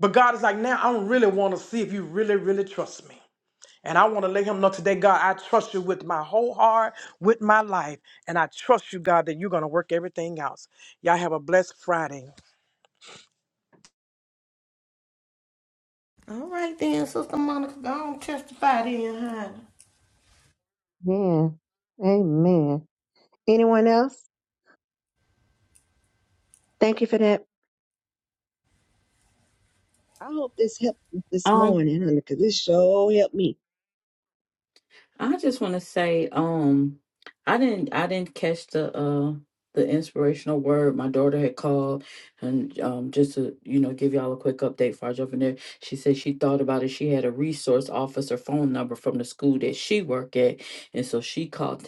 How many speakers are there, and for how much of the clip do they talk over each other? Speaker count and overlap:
four, about 1%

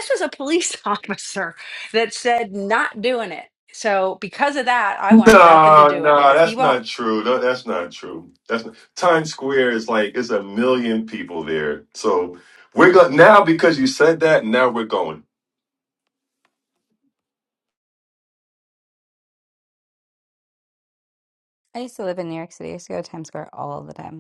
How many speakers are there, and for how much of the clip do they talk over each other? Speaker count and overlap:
three, about 7%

